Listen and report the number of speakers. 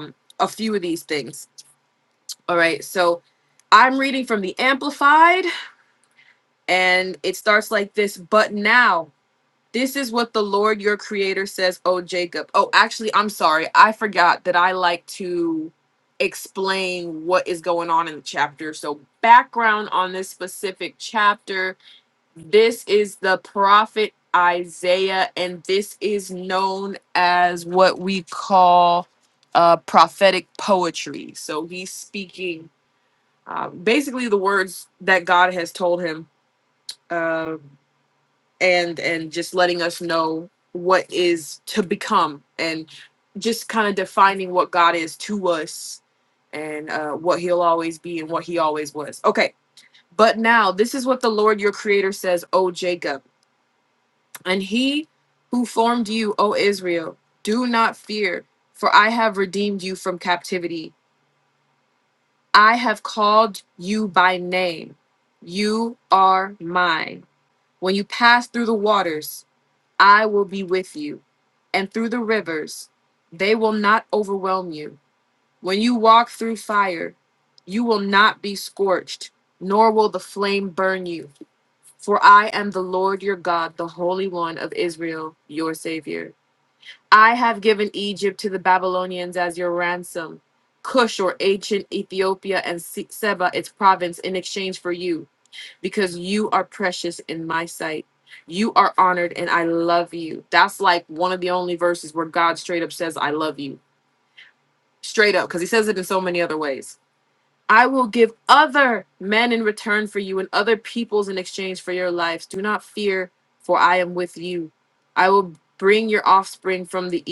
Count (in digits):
1